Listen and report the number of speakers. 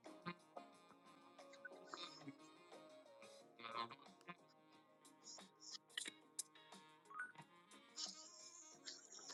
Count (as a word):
zero